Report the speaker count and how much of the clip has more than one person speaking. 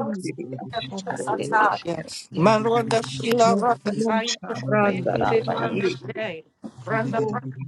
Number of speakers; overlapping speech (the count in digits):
2, about 56%